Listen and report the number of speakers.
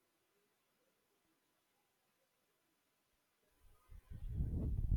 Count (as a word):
zero